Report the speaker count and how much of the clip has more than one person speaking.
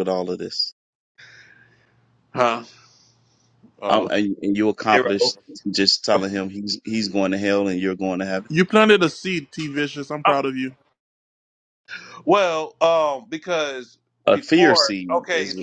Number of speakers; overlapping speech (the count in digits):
3, about 13%